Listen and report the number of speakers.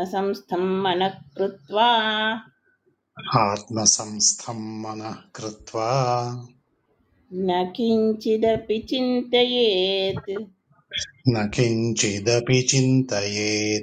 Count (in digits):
2